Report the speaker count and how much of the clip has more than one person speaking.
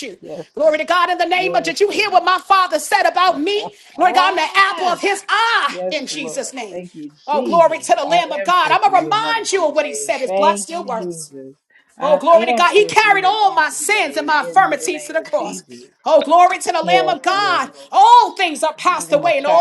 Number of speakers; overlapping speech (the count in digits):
2, about 56%